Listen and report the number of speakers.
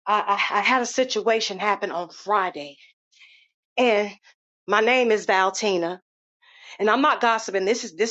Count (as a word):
one